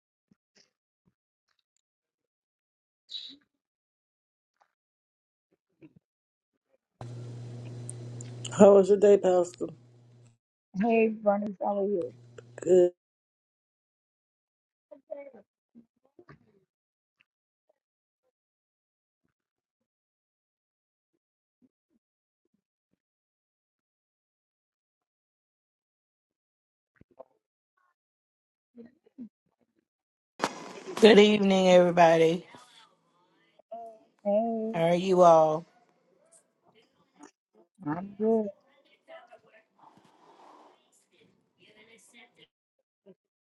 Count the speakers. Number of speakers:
3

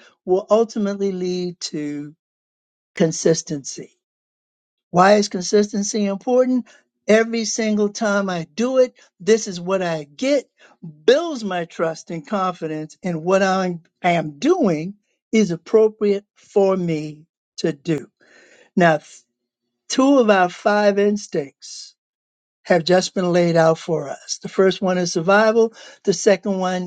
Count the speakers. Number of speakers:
1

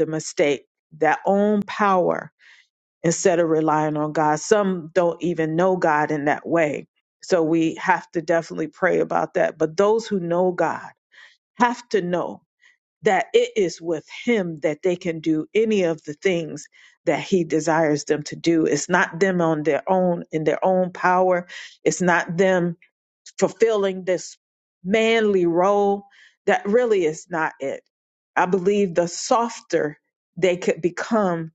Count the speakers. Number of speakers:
1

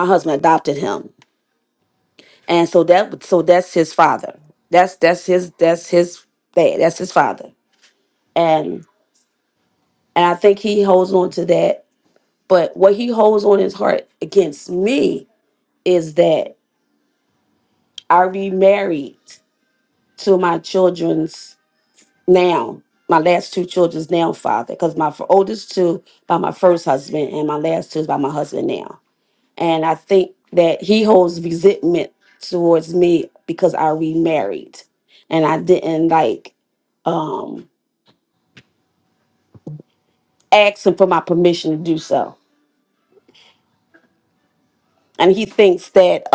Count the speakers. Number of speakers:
1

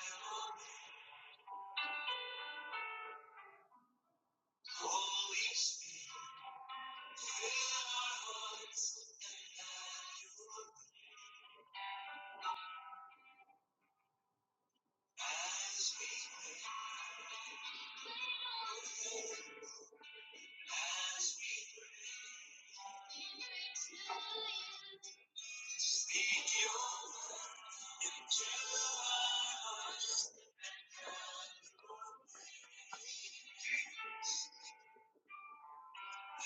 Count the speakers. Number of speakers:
0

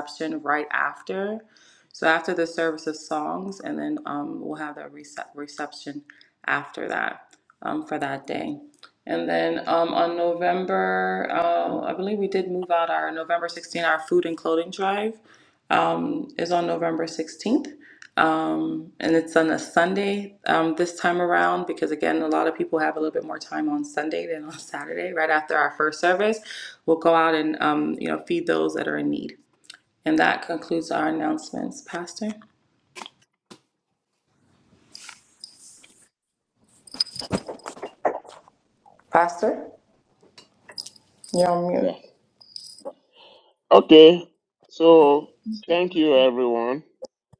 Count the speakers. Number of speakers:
2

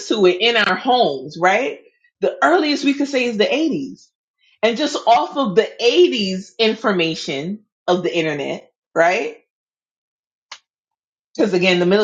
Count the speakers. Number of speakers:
1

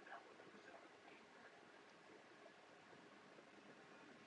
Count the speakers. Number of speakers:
0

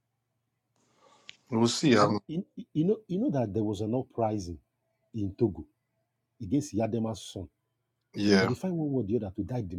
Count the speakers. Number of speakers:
2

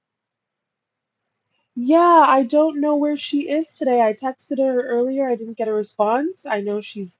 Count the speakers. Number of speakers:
1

